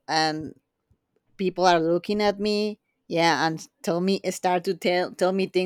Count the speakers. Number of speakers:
one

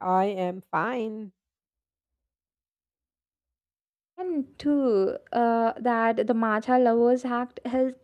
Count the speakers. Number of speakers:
two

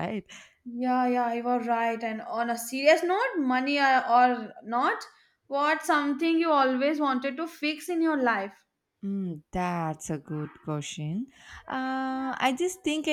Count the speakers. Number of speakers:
two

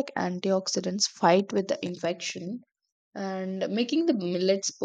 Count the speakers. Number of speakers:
one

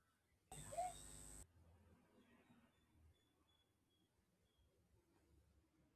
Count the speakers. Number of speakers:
zero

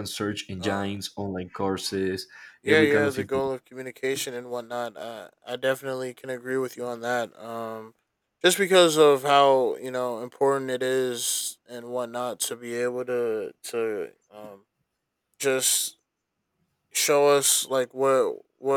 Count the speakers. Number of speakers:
two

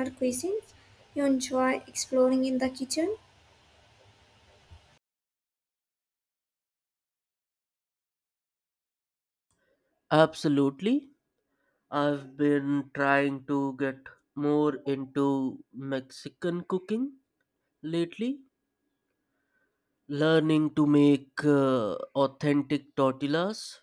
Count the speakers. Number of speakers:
two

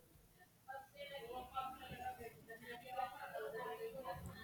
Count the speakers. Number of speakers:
zero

